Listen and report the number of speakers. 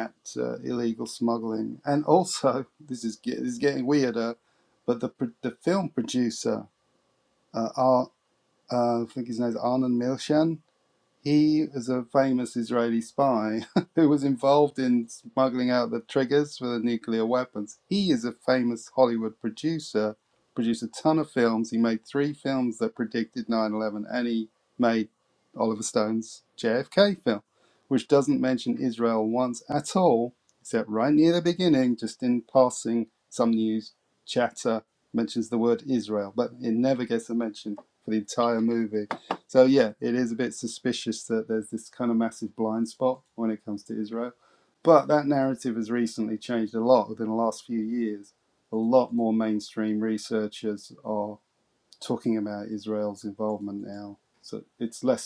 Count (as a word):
one